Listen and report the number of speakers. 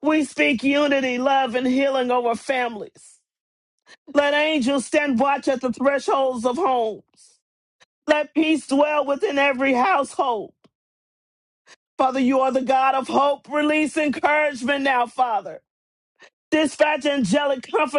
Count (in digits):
1